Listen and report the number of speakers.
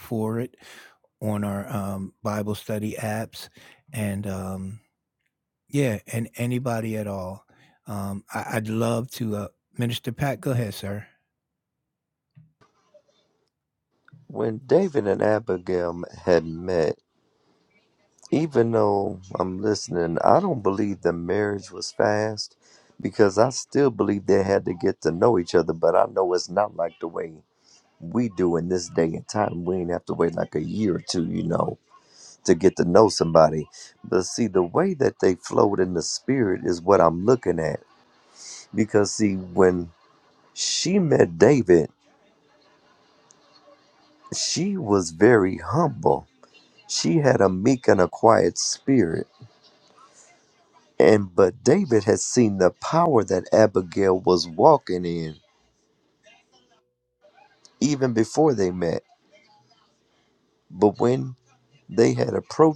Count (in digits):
2